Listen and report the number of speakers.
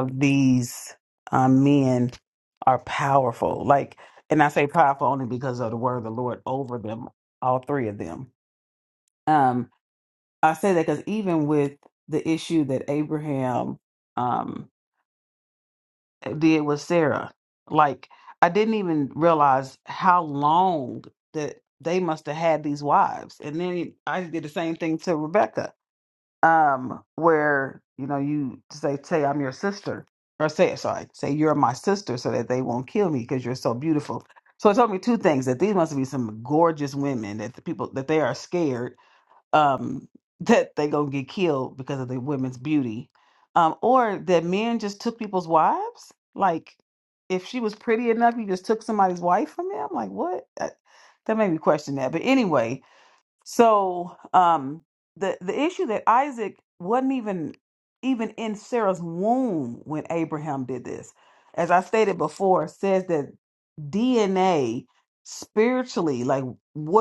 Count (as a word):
one